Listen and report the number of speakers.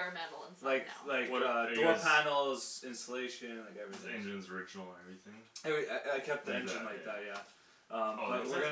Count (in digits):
3